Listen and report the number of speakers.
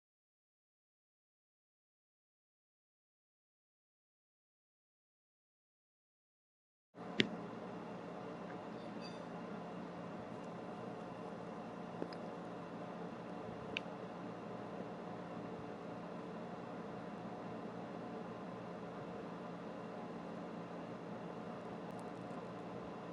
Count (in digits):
0